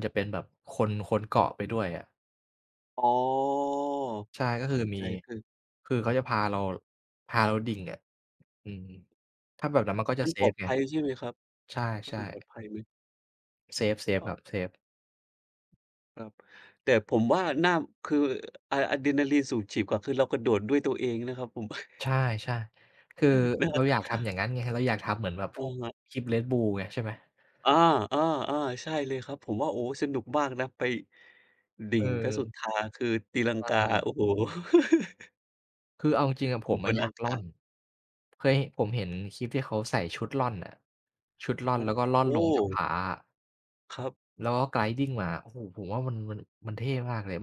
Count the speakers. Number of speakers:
2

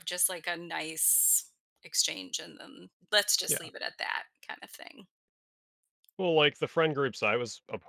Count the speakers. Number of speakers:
2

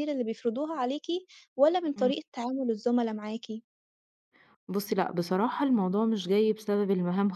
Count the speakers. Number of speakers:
2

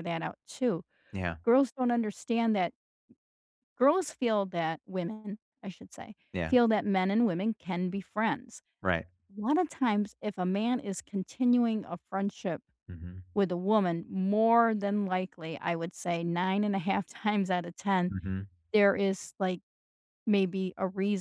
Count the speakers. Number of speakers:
2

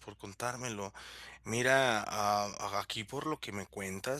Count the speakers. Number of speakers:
1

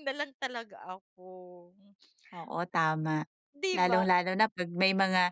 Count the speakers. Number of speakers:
2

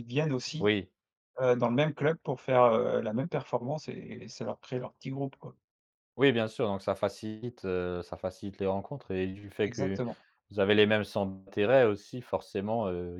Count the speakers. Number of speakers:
2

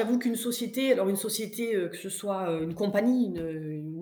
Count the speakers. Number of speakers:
1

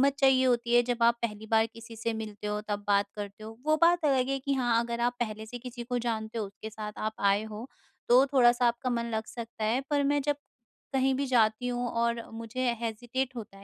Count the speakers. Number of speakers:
1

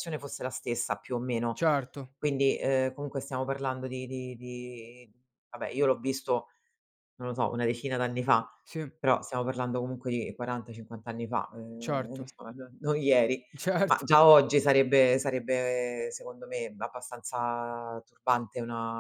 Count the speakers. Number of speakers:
2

